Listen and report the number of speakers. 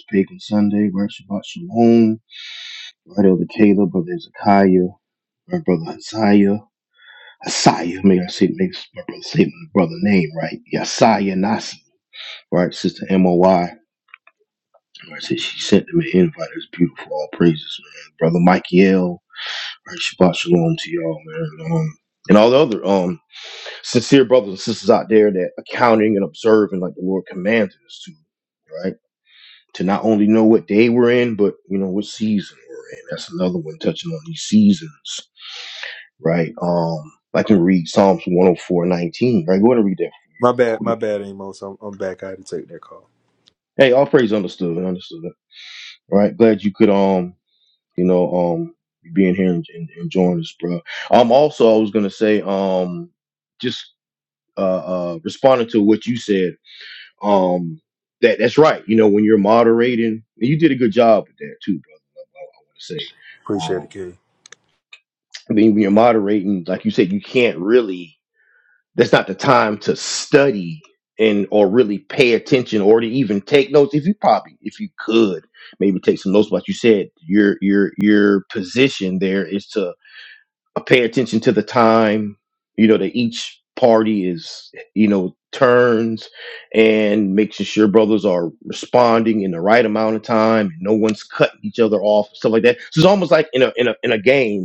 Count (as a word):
two